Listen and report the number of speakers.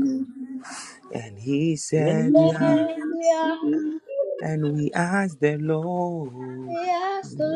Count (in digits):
3